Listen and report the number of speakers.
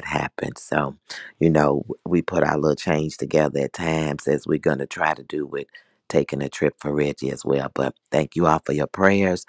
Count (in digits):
1